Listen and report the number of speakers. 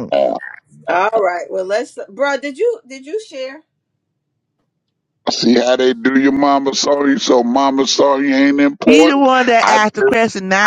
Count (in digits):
3